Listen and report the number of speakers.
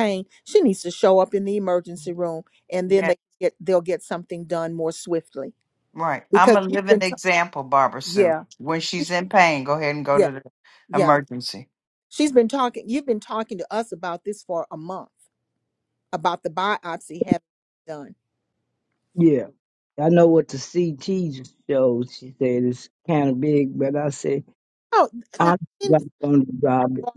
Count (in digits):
3